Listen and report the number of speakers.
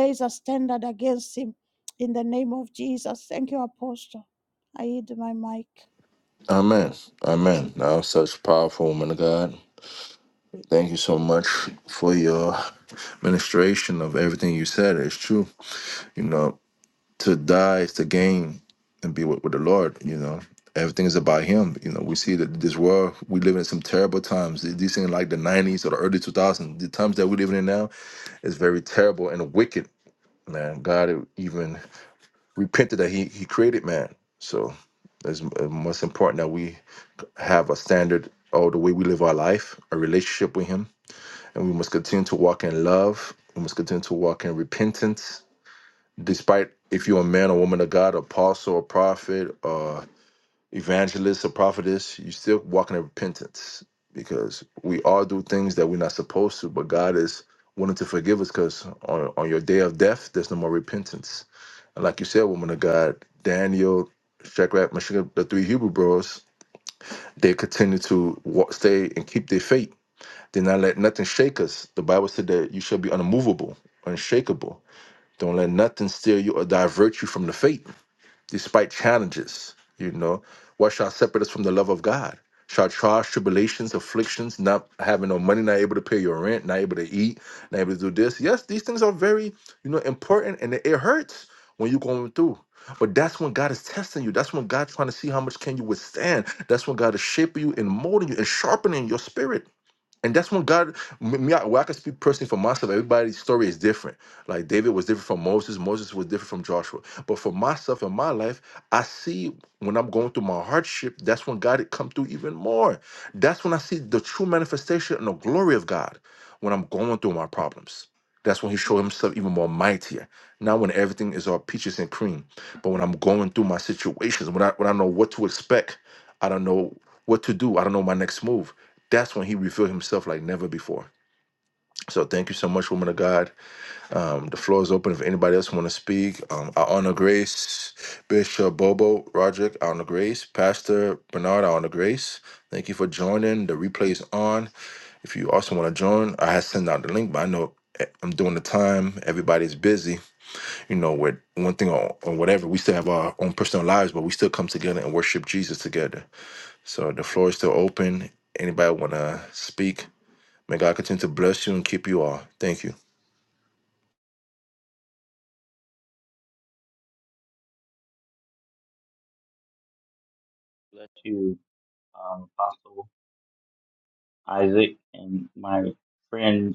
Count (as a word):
three